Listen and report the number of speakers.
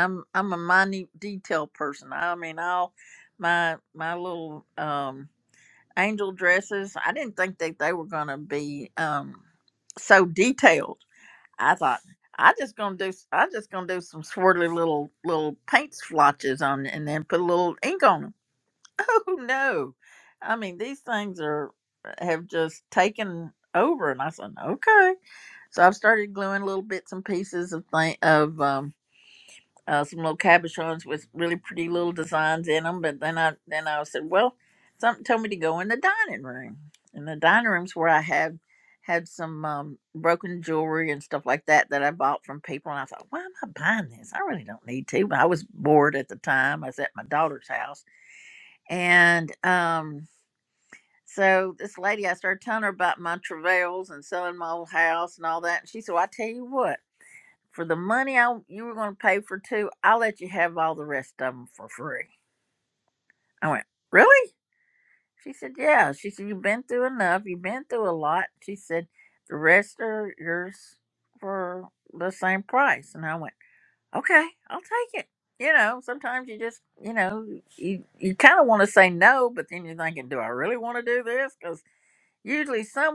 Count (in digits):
1